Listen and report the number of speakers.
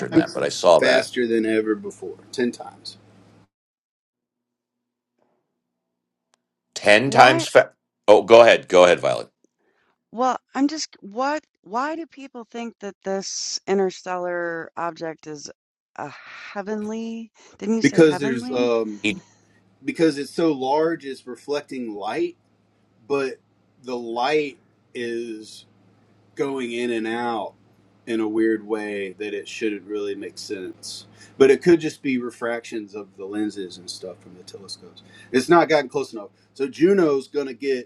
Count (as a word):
three